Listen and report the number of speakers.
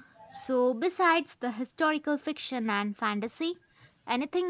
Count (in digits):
1